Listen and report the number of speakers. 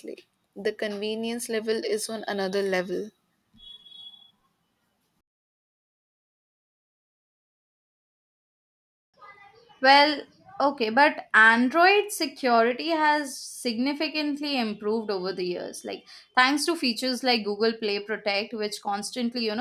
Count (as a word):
two